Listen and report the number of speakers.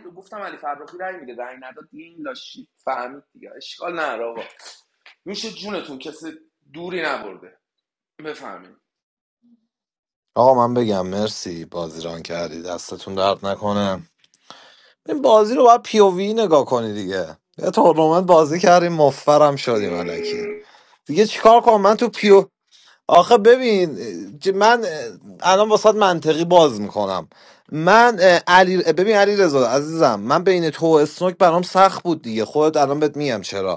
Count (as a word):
two